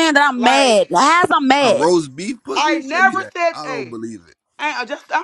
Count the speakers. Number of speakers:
3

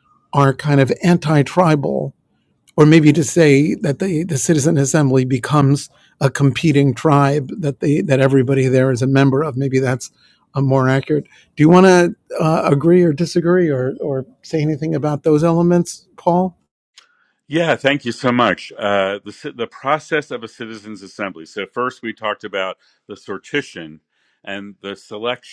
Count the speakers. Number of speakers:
2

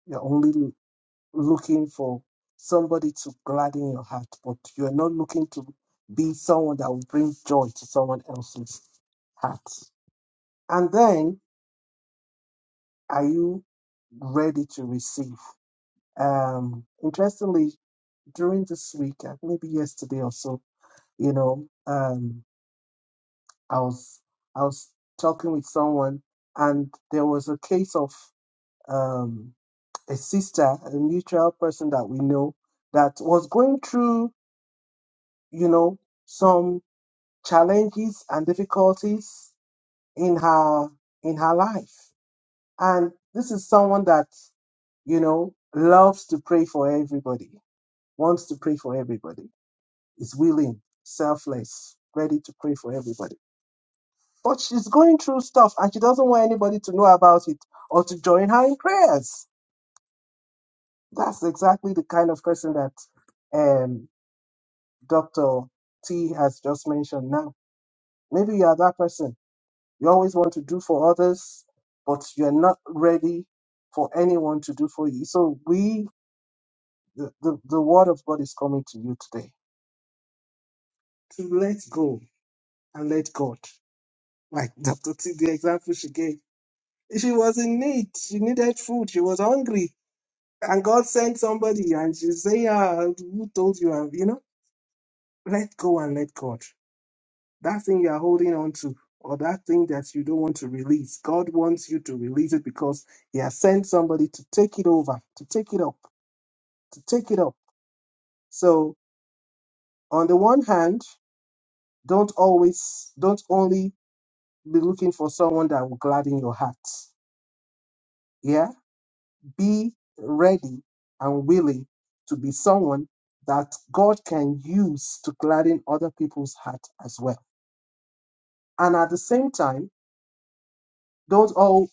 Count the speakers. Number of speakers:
1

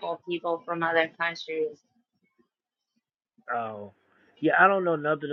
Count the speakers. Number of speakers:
2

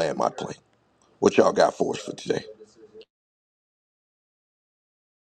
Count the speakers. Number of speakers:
1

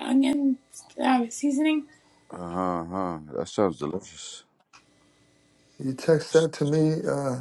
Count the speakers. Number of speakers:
3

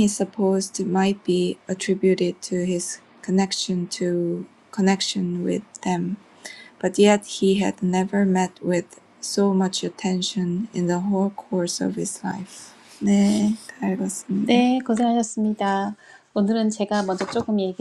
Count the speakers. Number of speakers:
2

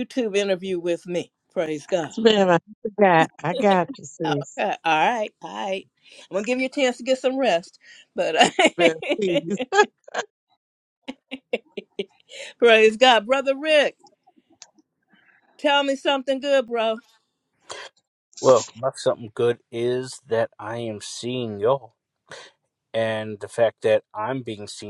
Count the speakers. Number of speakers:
3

